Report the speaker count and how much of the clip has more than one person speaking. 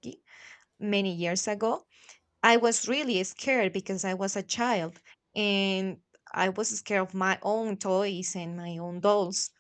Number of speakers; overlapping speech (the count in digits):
1, no overlap